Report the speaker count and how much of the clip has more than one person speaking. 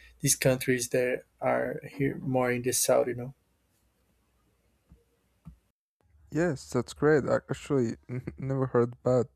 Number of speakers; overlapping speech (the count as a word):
two, no overlap